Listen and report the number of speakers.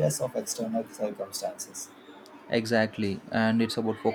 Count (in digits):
2